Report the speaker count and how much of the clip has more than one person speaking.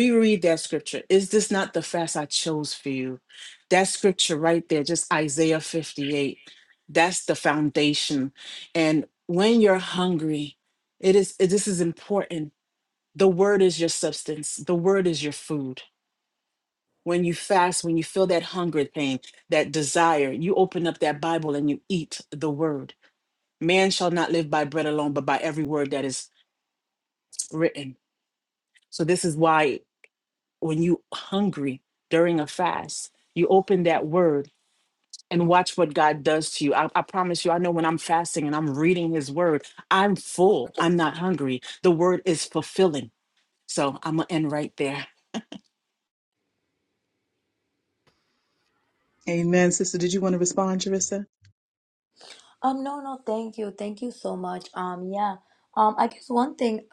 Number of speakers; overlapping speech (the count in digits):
3, no overlap